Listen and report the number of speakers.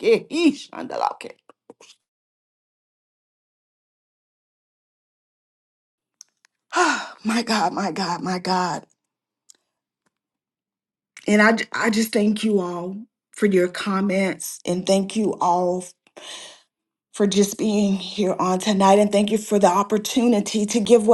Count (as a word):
one